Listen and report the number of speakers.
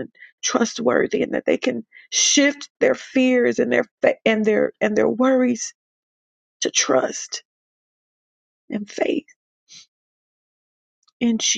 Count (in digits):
1